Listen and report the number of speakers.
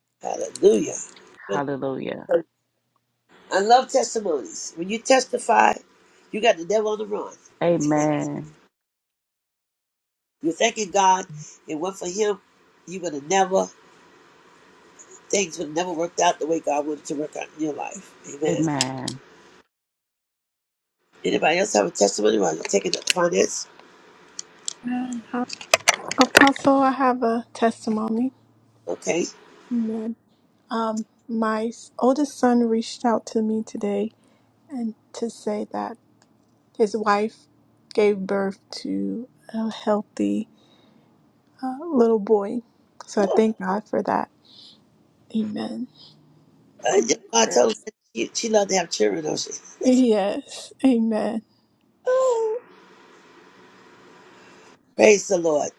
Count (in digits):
3